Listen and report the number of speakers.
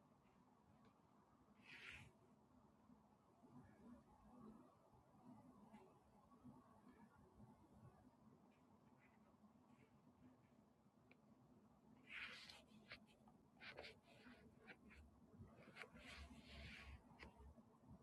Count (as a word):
zero